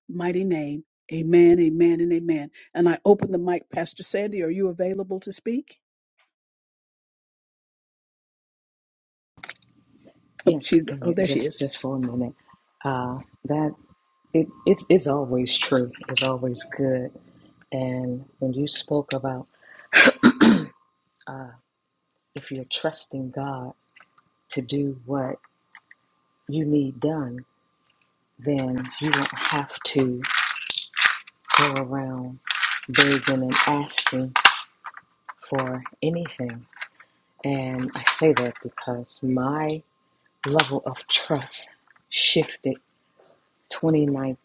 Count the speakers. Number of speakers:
2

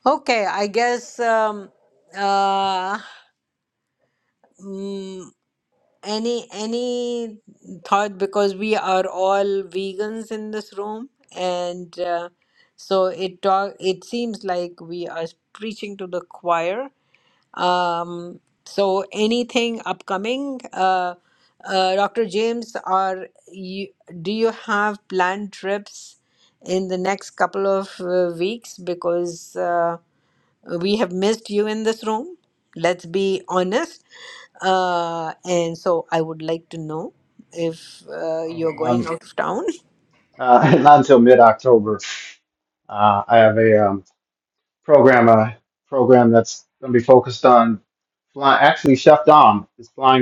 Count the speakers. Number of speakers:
2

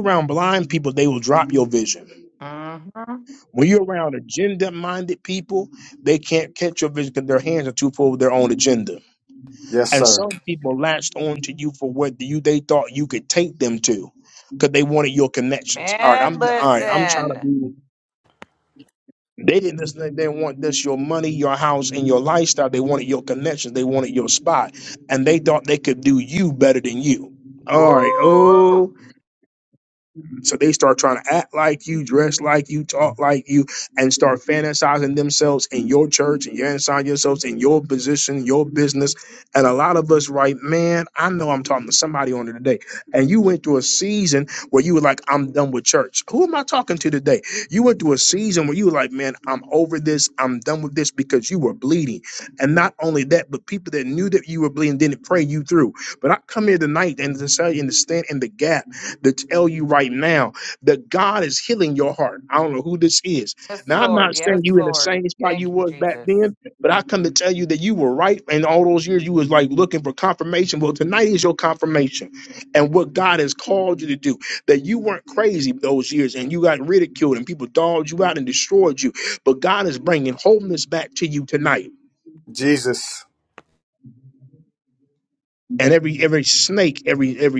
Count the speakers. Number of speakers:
3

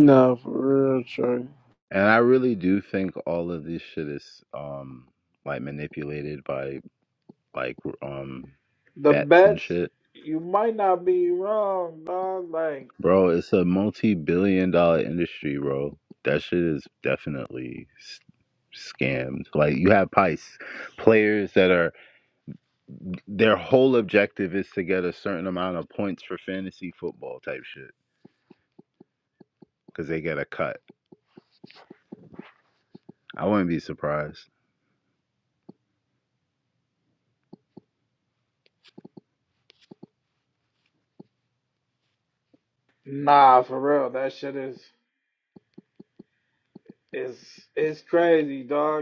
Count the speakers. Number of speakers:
3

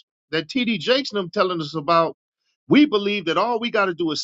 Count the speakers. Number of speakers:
1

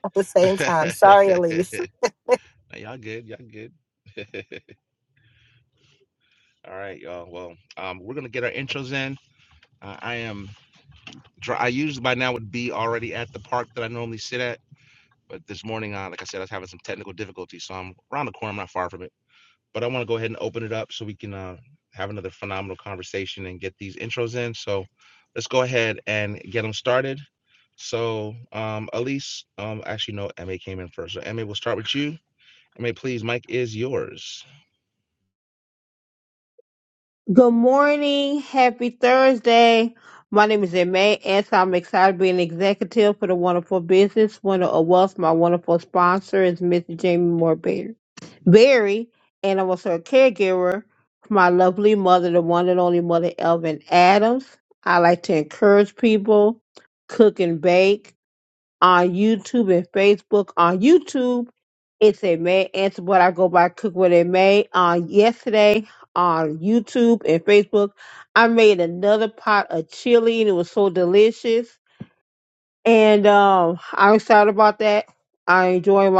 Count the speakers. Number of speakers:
3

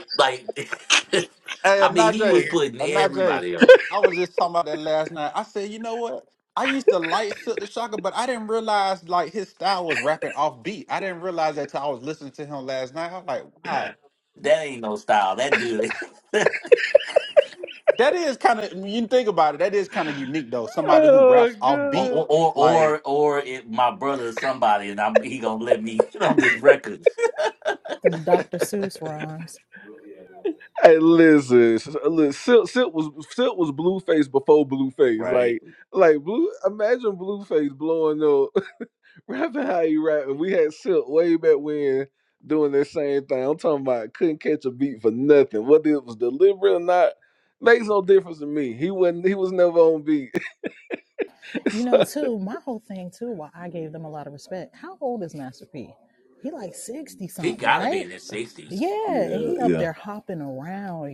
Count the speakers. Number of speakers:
4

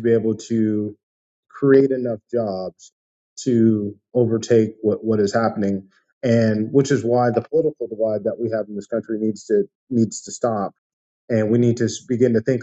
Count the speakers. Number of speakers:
1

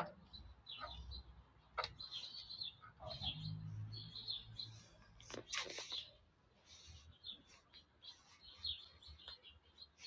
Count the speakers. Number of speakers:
0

